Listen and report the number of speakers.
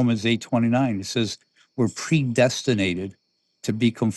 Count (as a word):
one